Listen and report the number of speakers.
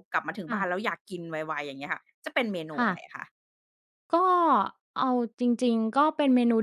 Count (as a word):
two